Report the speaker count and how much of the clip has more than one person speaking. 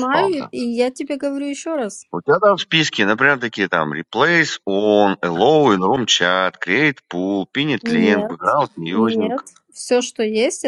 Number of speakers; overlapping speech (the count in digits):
2, about 14%